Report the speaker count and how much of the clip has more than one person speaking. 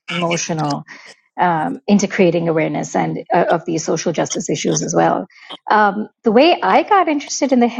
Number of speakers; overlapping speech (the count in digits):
1, no overlap